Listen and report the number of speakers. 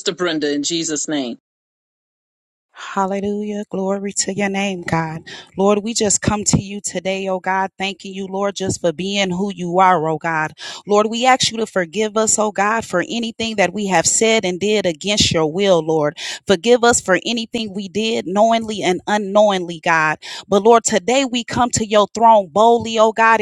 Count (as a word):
two